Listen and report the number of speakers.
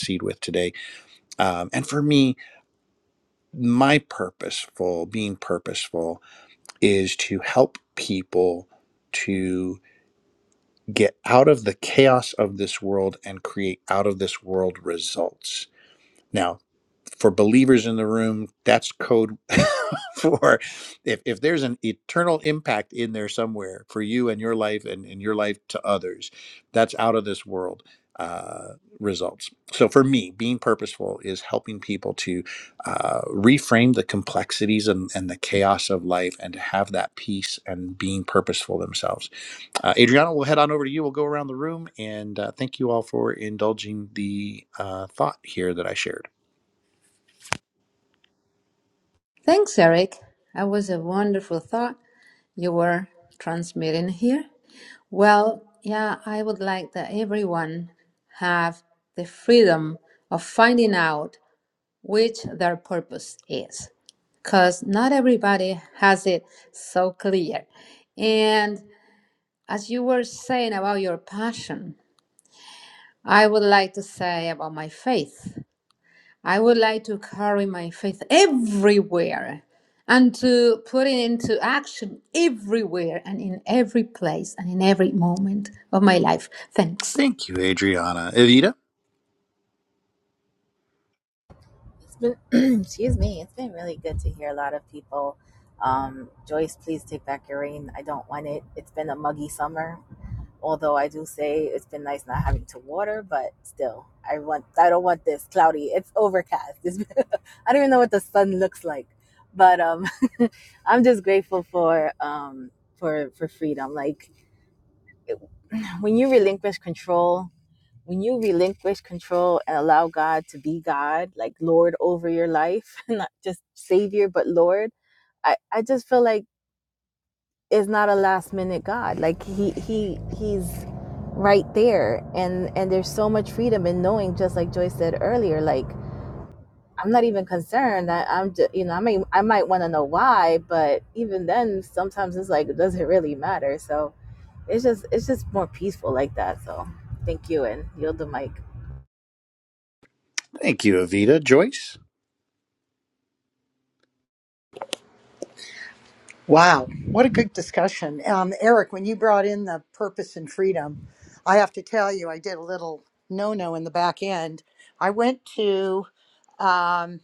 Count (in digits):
4